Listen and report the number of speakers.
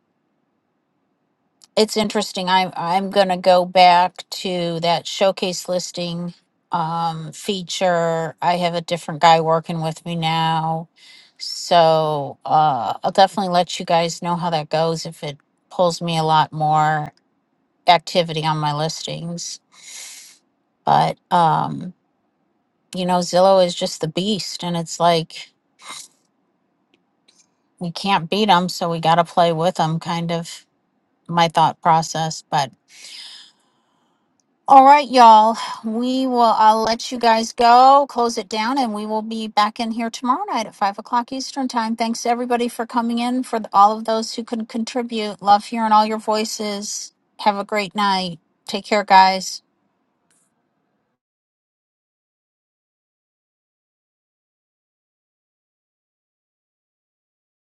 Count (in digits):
1